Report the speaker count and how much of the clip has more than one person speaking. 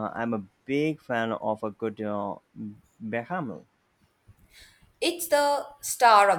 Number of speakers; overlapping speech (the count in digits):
2, no overlap